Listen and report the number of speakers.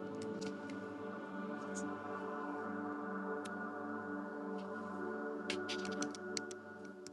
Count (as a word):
zero